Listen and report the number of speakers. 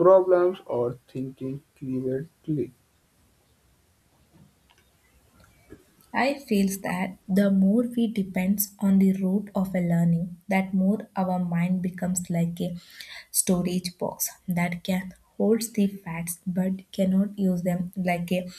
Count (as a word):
two